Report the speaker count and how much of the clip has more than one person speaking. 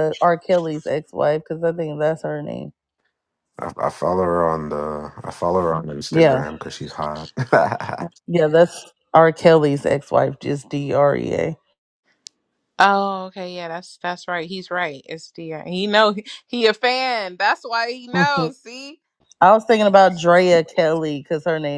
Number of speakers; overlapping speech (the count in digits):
3, about 7%